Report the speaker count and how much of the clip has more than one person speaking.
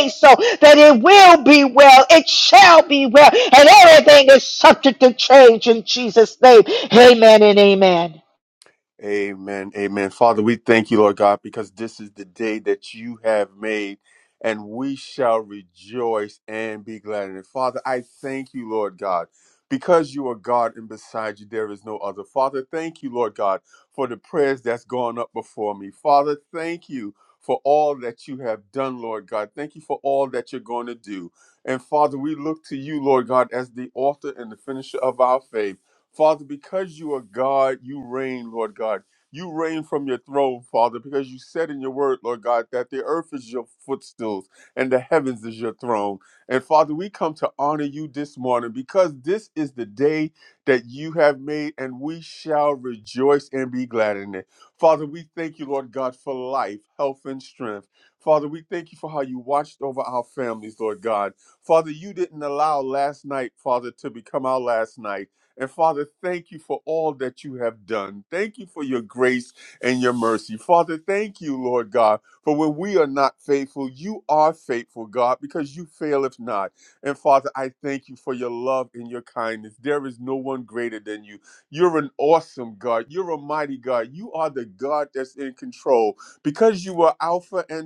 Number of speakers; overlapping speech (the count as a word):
two, no overlap